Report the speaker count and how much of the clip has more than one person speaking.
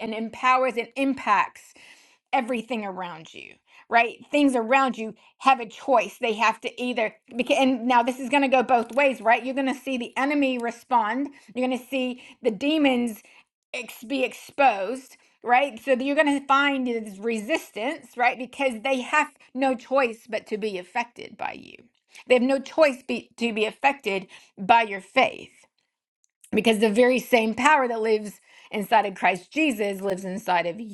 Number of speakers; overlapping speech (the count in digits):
1, no overlap